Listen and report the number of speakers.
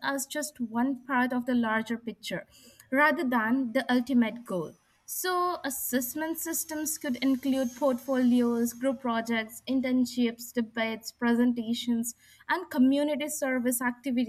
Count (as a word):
one